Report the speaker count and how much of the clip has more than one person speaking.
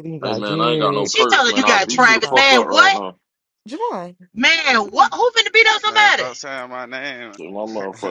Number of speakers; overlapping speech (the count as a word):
four, about 43%